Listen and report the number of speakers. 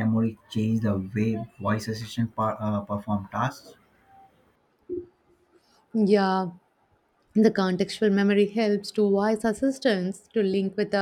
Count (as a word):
two